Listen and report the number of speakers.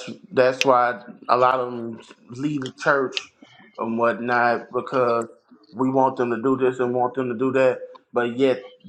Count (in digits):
1